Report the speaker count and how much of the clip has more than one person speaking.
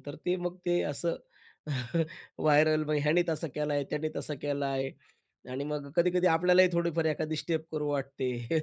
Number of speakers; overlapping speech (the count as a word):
one, no overlap